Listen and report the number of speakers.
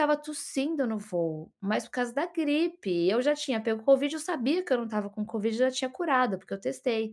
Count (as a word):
one